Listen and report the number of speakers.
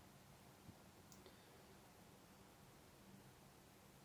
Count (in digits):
0